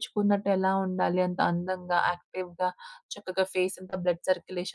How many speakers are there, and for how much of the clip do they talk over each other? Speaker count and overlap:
1, no overlap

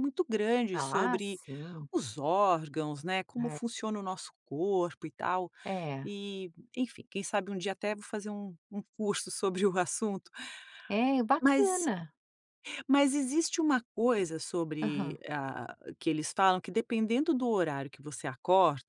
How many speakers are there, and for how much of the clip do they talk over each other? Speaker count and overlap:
2, about 9%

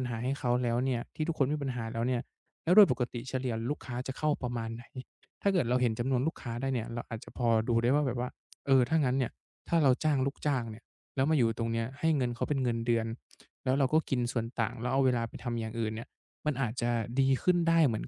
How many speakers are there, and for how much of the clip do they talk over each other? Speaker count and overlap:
1, no overlap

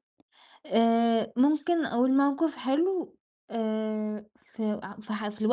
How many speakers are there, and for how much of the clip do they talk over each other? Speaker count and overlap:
1, no overlap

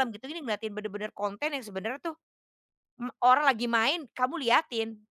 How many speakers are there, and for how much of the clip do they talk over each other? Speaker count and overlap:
1, no overlap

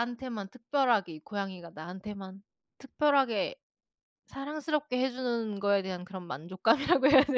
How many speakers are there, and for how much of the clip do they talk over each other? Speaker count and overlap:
1, no overlap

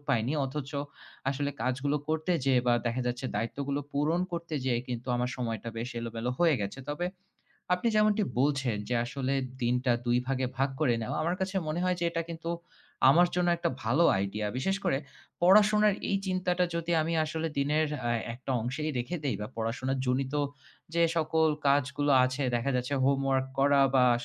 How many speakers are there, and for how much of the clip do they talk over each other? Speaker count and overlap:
1, no overlap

